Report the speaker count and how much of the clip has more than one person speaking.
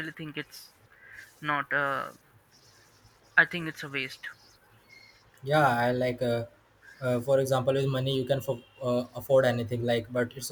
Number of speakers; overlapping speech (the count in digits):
2, no overlap